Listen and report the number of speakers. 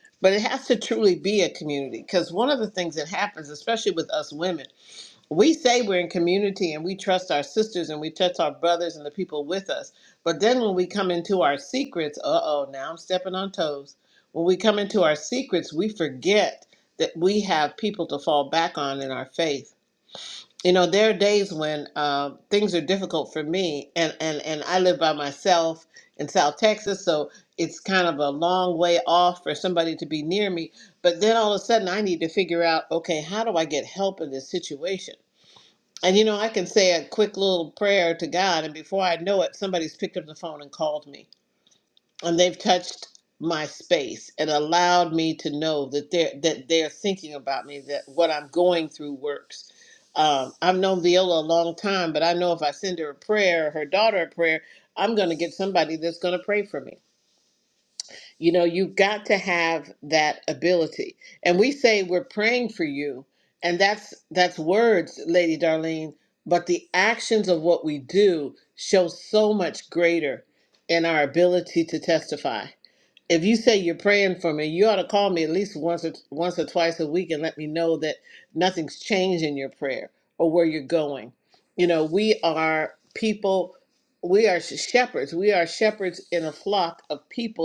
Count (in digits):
1